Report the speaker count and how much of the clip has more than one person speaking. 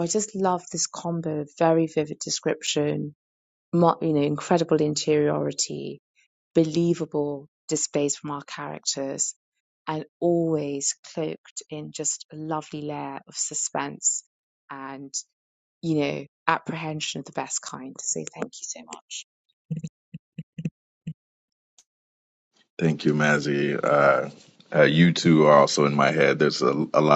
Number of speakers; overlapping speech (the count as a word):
two, no overlap